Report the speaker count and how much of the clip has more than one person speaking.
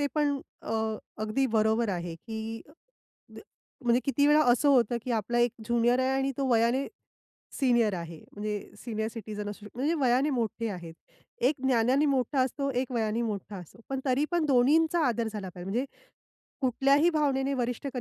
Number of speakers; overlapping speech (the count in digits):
1, no overlap